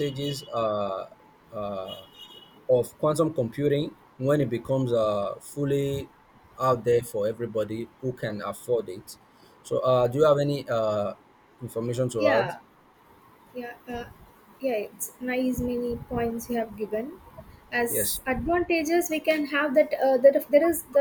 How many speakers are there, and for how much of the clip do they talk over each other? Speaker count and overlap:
2, about 3%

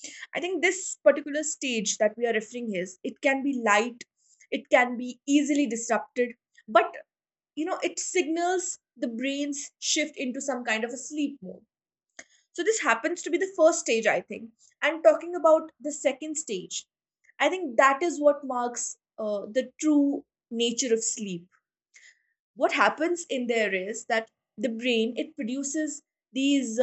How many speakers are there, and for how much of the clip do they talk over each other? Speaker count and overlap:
1, no overlap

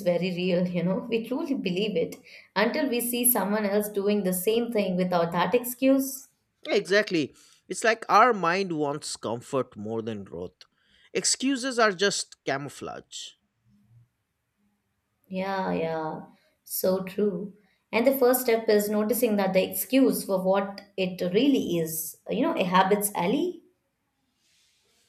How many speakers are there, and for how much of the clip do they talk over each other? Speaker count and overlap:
2, no overlap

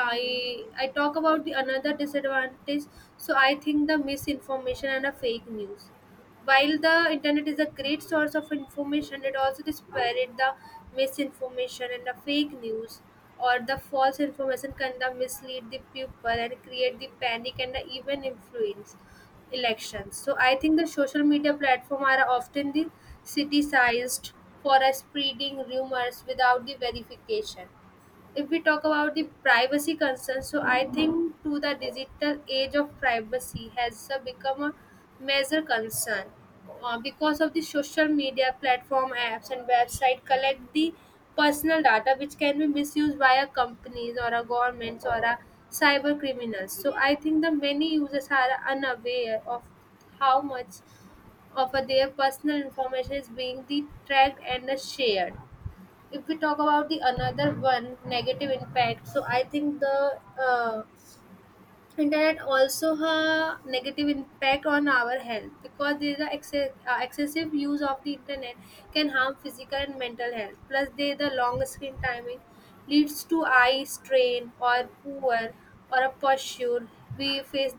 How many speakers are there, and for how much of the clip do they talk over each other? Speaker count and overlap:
1, no overlap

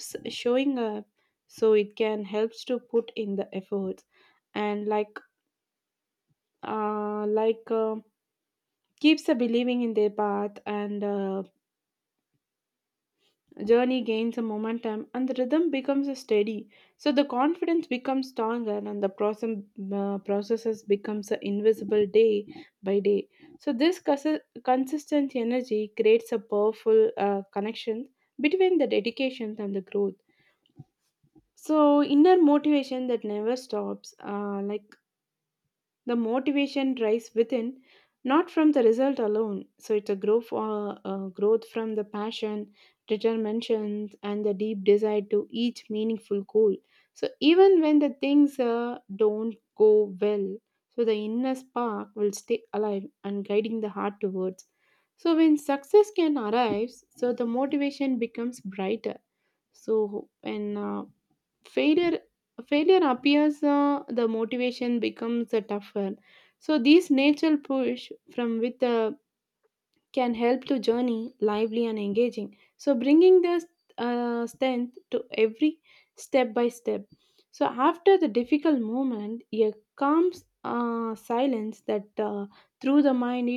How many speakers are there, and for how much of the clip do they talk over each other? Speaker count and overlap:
1, no overlap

